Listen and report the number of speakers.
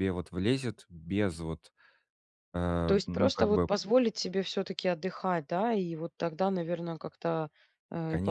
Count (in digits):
2